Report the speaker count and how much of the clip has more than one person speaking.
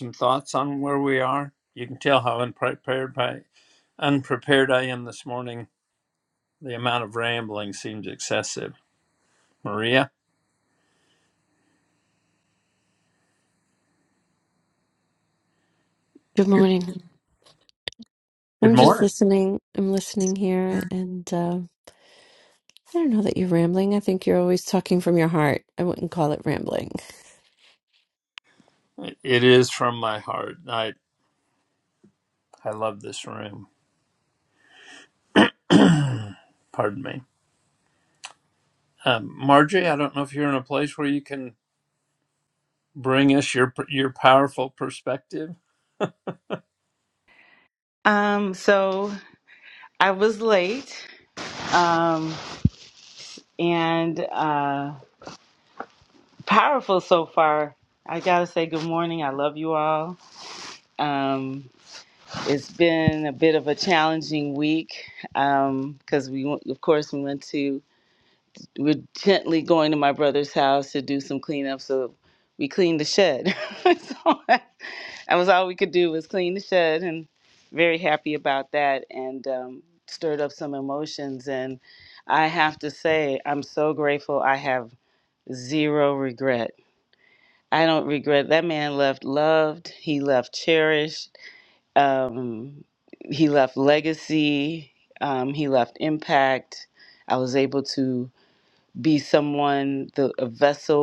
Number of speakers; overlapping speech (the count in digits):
3, under 1%